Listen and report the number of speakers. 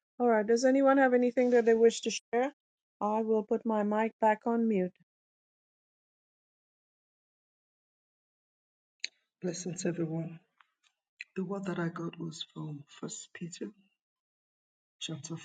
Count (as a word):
two